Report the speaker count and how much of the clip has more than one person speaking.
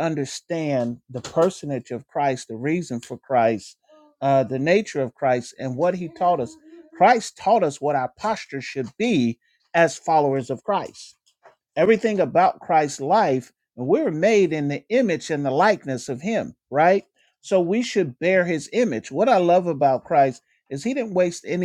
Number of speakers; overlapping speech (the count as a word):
one, no overlap